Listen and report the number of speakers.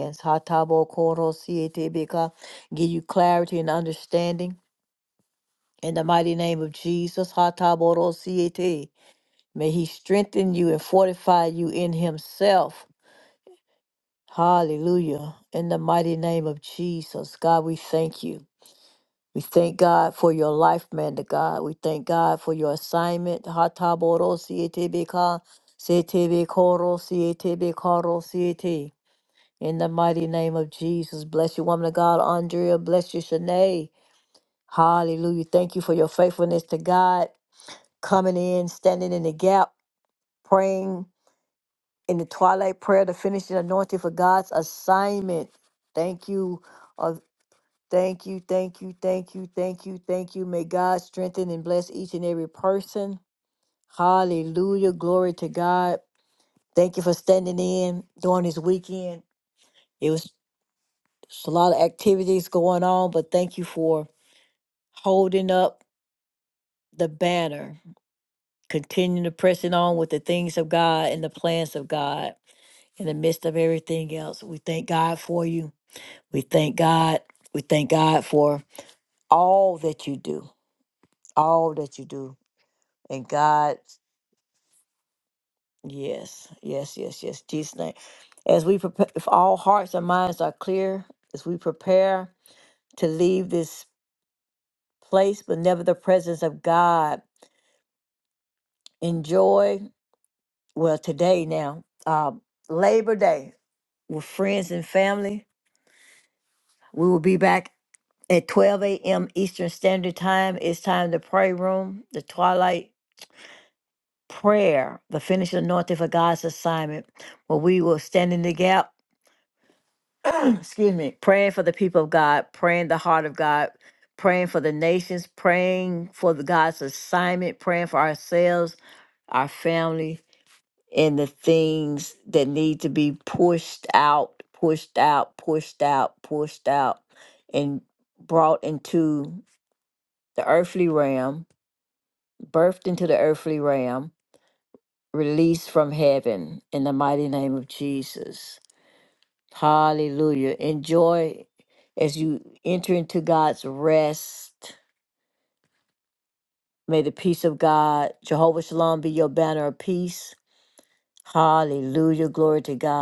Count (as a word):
one